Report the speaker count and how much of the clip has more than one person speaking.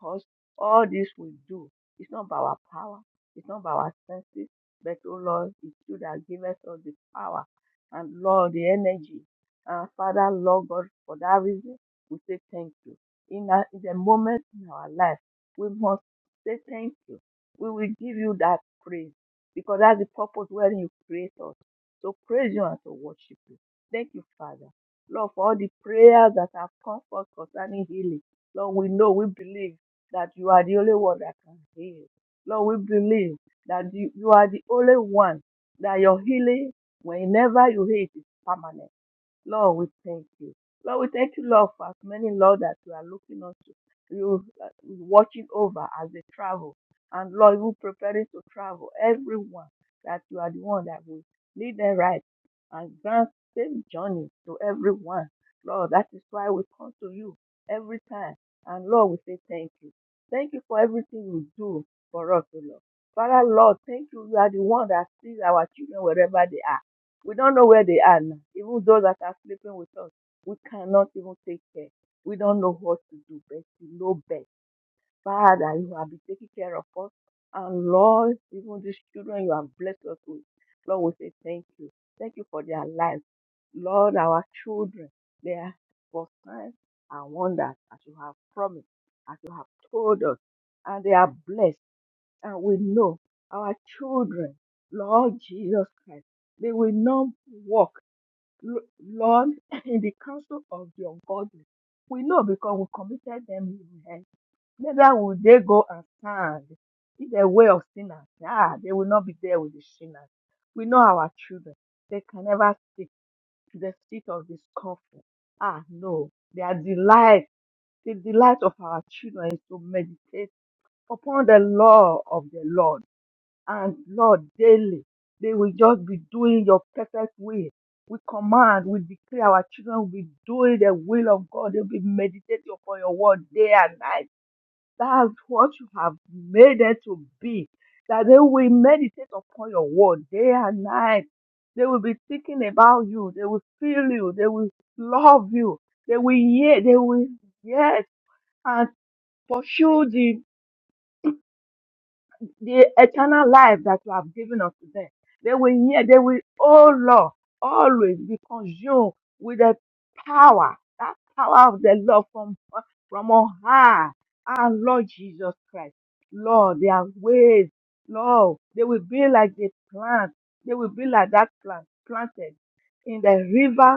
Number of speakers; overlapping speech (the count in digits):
1, no overlap